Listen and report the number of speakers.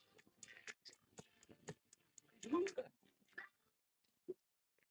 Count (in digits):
0